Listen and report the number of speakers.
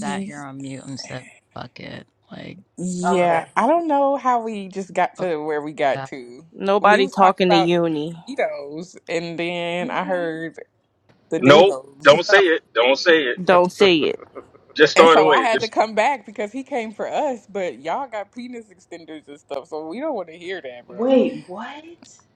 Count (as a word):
five